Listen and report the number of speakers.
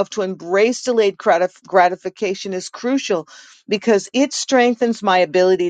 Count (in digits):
1